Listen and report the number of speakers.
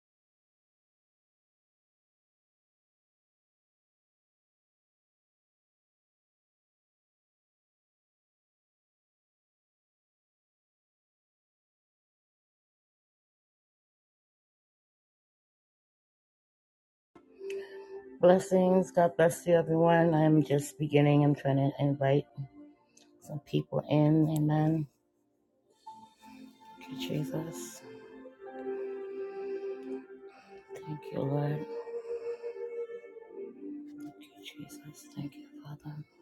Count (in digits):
1